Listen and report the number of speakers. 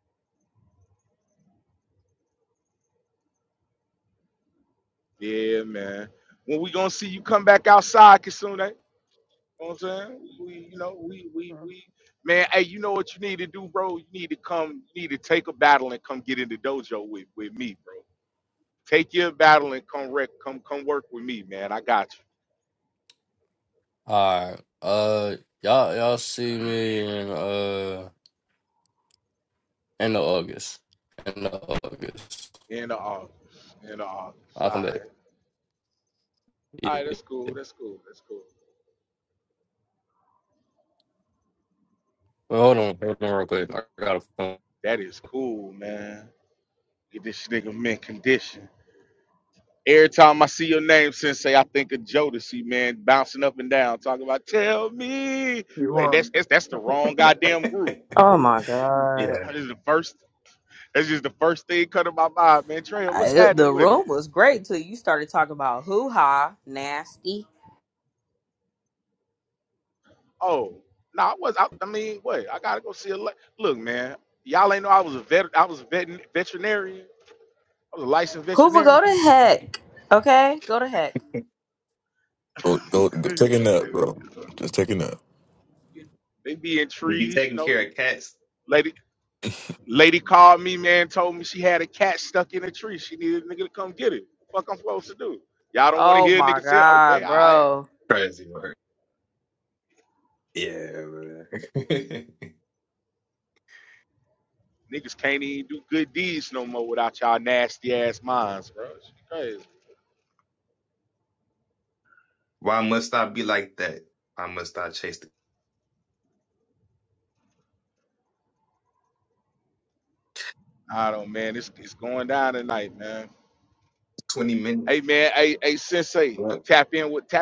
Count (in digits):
5